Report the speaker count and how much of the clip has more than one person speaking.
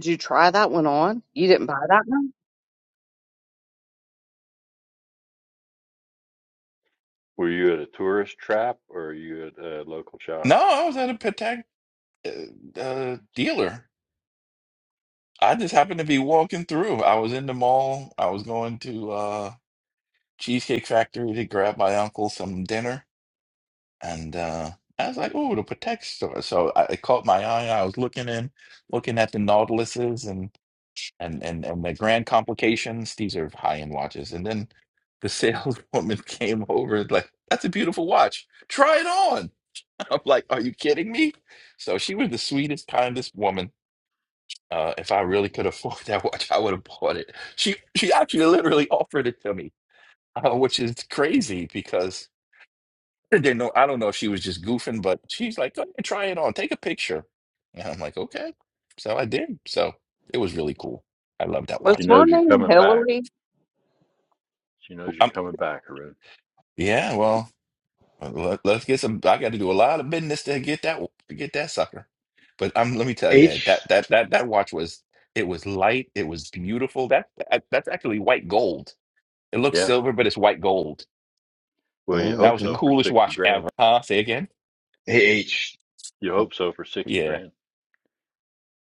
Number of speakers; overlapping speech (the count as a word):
four, about 5%